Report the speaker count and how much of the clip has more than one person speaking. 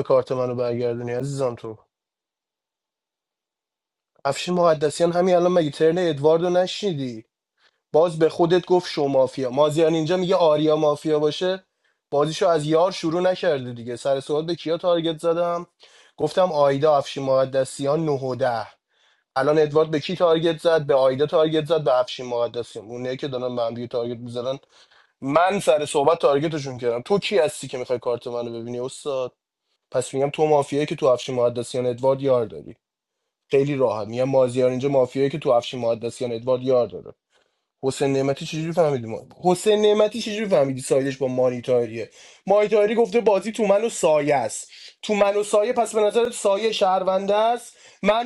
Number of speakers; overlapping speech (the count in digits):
1, no overlap